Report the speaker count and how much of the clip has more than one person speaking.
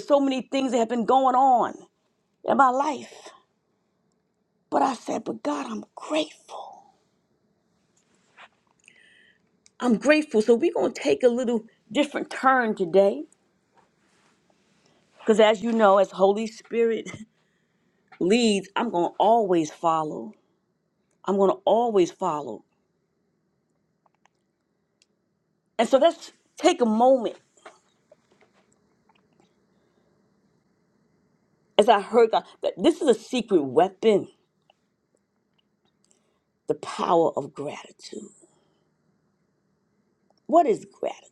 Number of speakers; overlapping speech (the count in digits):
1, no overlap